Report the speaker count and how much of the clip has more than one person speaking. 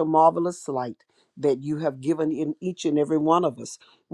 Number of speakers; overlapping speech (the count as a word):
one, no overlap